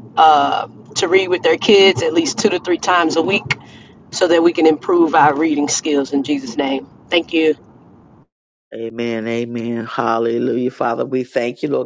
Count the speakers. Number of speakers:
2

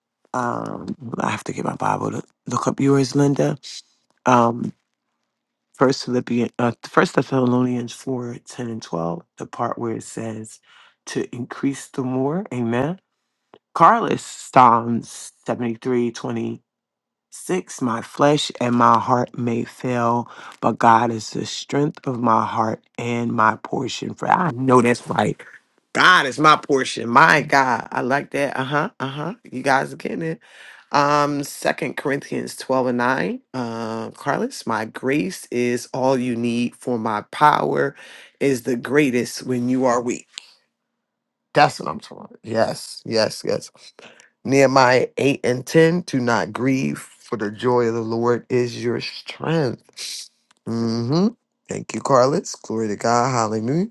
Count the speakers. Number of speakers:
1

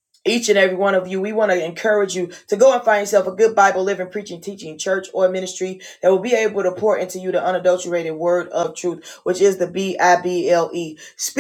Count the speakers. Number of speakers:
1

